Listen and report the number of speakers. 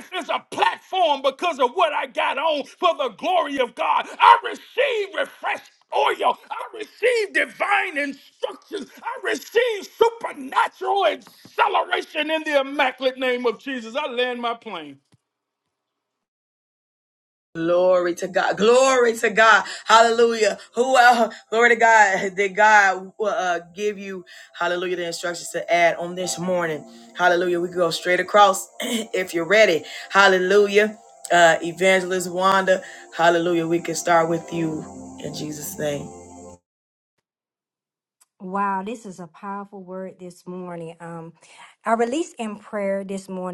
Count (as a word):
three